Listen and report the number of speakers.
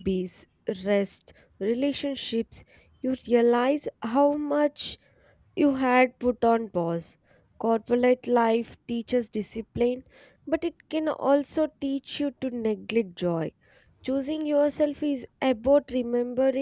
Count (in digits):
1